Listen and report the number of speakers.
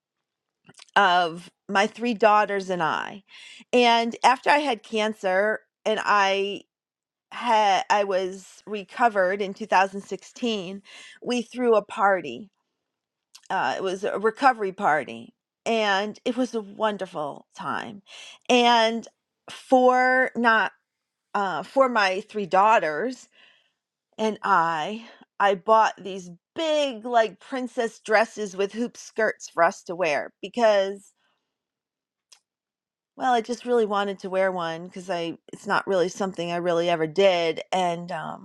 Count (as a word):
one